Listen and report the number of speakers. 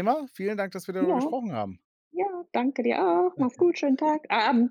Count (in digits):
2